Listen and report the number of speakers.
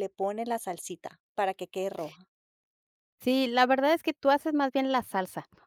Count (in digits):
2